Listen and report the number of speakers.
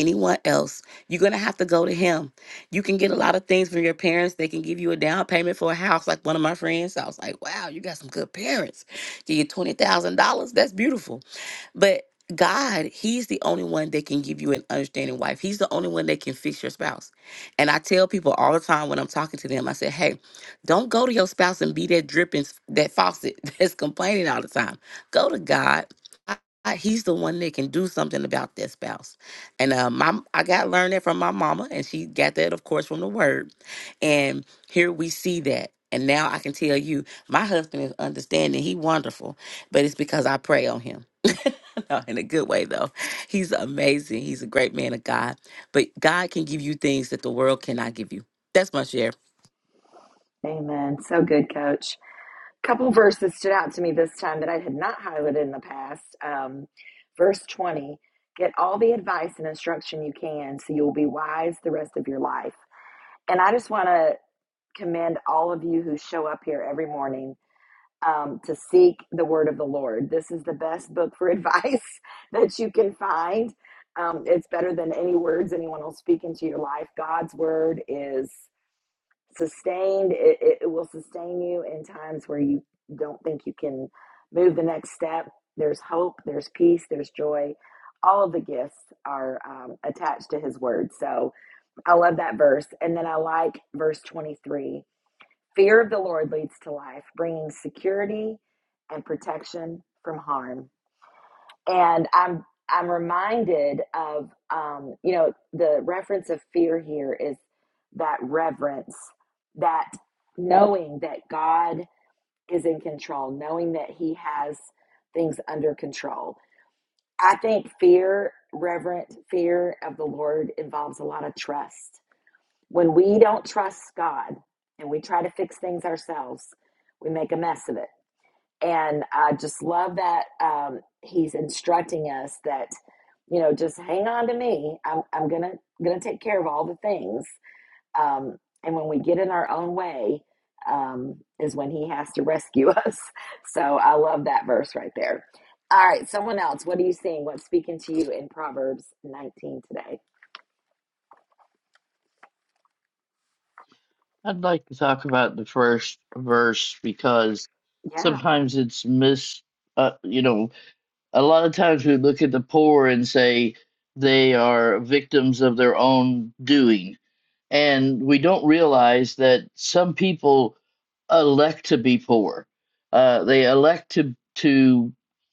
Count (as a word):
three